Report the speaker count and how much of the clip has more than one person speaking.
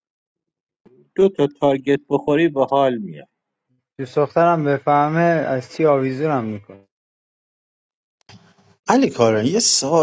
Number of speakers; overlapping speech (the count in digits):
3, no overlap